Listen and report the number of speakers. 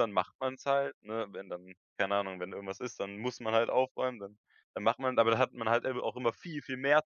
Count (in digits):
1